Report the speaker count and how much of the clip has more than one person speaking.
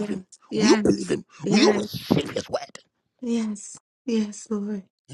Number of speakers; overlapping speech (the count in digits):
2, about 15%